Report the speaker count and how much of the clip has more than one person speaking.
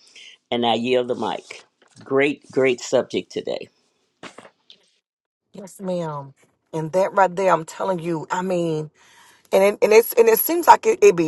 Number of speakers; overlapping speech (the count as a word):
two, no overlap